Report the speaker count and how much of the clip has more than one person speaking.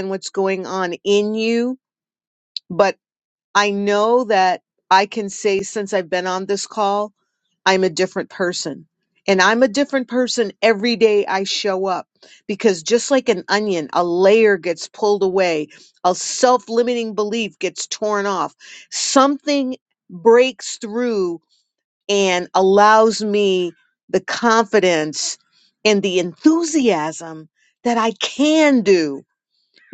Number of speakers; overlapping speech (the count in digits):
1, no overlap